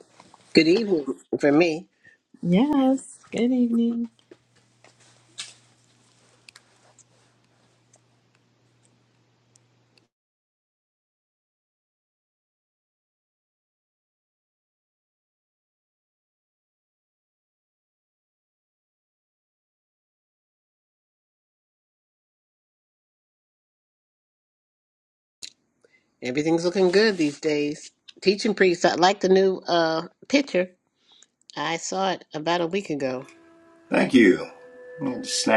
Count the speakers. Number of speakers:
3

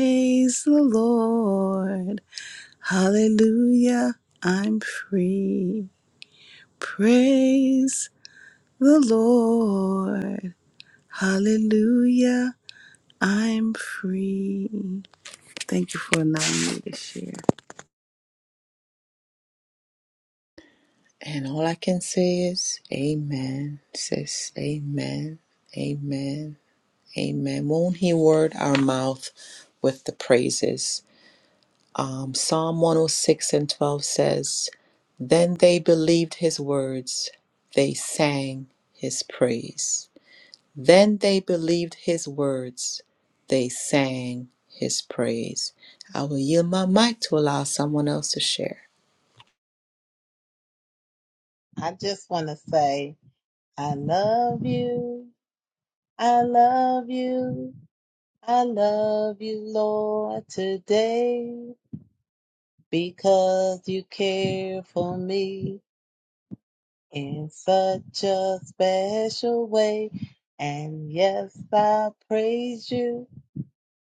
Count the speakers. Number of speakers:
3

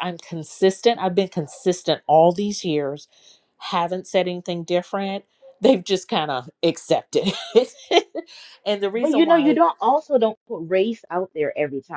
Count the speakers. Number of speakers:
2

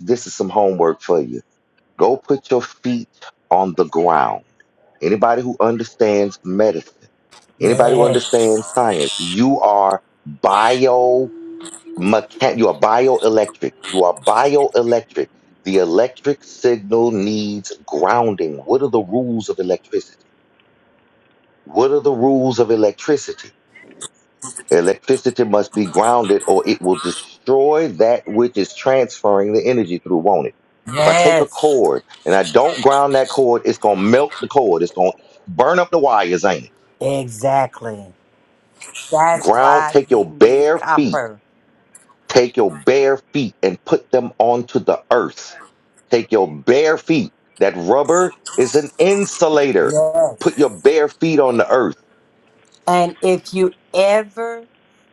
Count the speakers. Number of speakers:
2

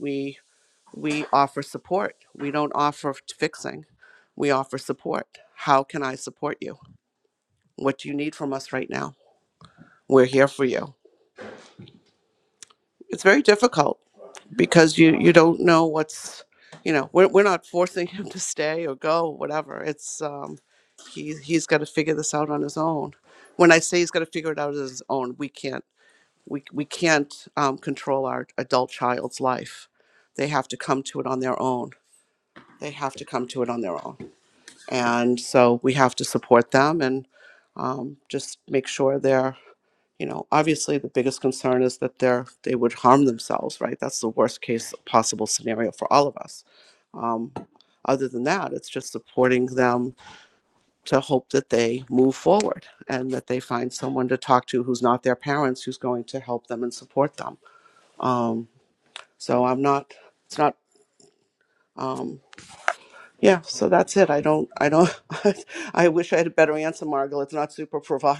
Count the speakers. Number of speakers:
1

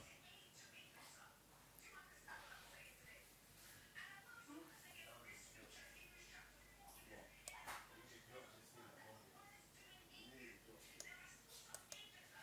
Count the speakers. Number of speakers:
0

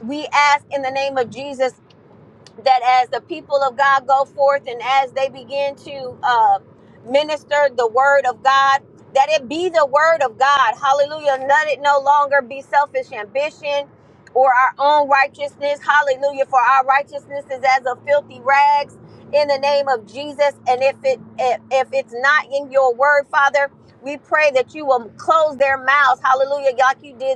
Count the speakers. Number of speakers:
1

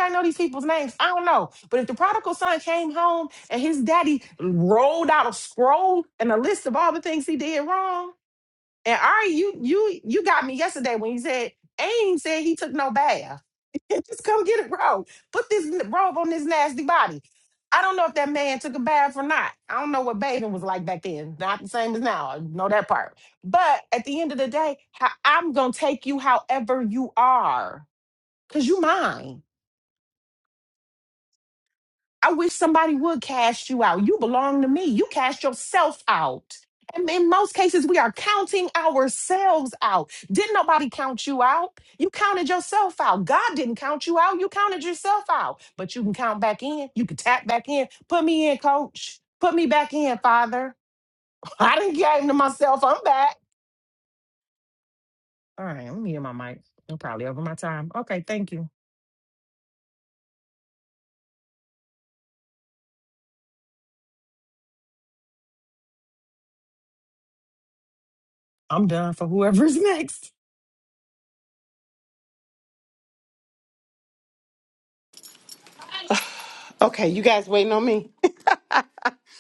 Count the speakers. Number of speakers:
2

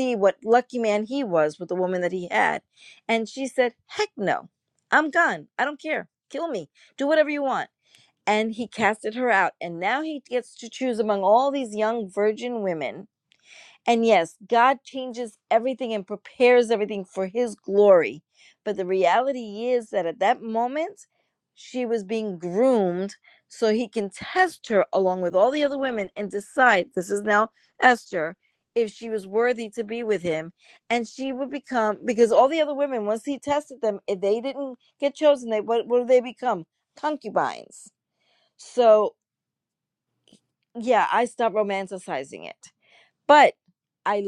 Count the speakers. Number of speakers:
1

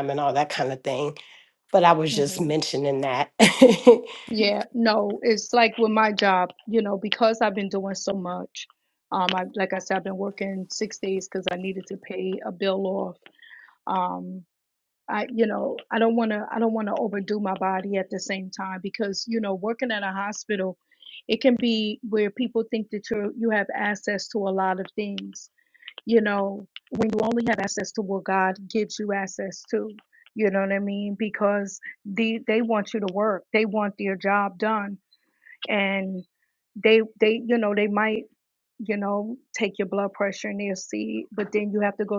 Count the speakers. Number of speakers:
2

